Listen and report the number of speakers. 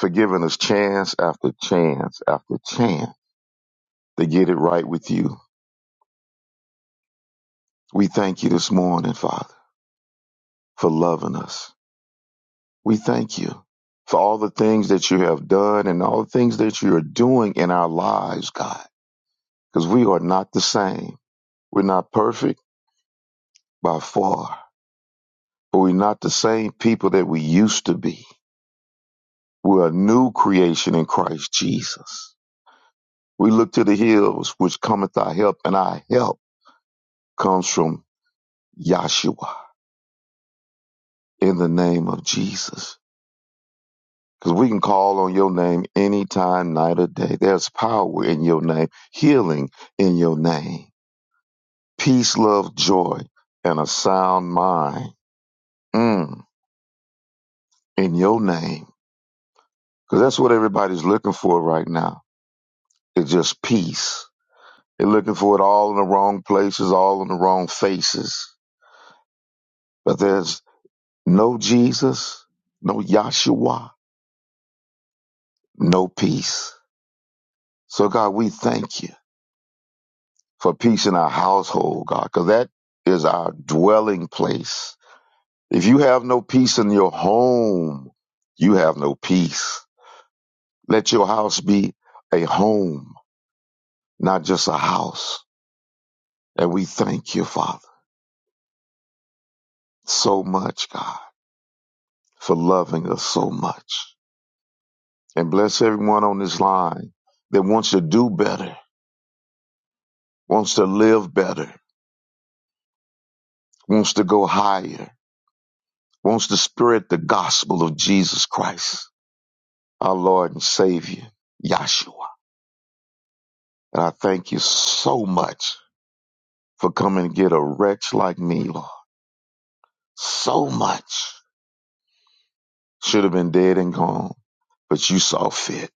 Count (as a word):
one